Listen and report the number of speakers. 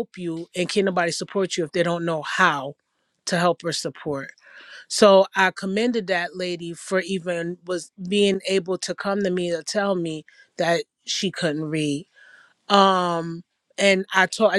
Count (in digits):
1